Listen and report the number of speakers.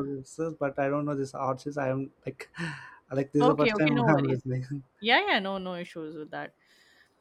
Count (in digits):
2